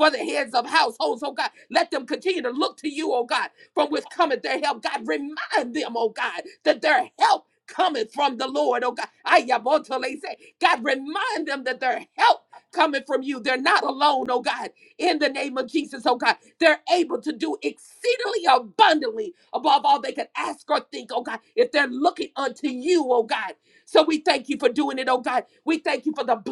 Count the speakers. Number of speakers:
one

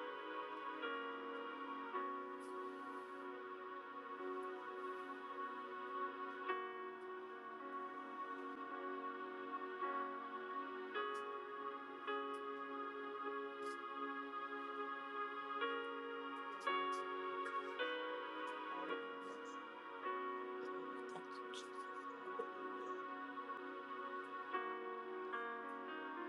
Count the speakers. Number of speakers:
zero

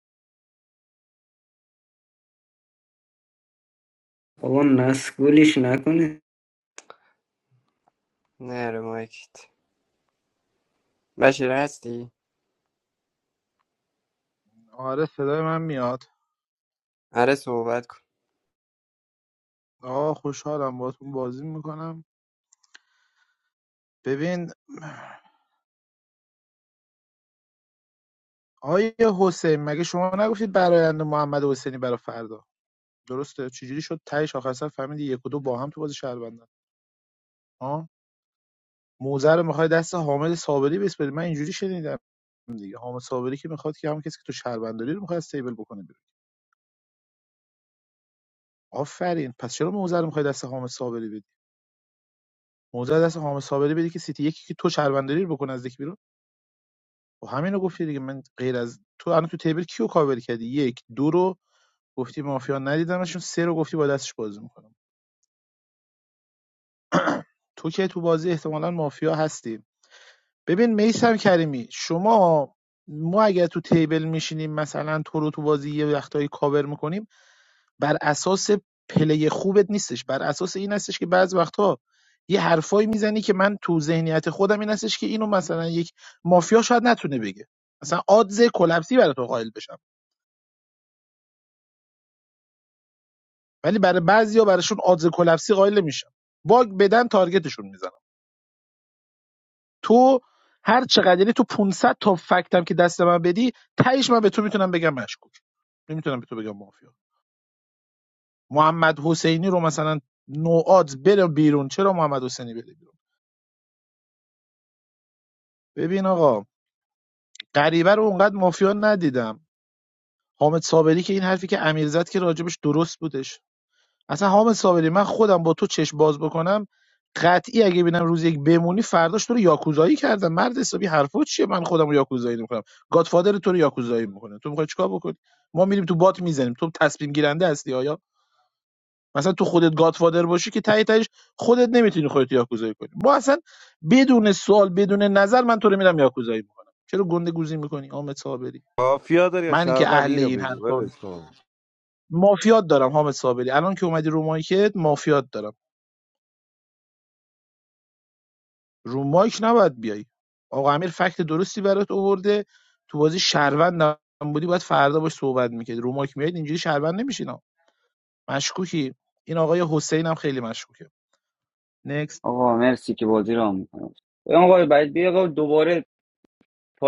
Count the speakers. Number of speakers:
five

